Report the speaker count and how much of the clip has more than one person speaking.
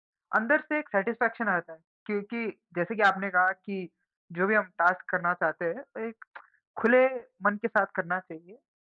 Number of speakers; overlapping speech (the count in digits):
1, no overlap